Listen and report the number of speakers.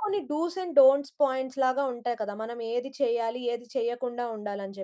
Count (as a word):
one